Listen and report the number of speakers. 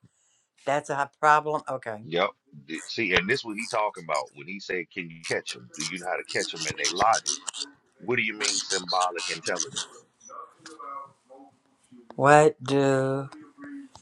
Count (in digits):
2